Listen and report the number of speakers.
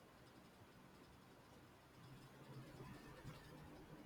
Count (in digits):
0